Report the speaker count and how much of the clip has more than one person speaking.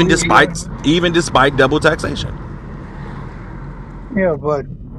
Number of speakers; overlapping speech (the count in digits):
2, about 10%